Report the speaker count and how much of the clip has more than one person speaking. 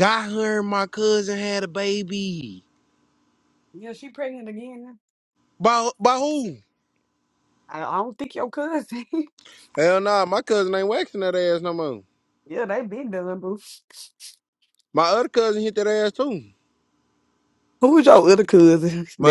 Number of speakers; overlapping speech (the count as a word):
two, about 1%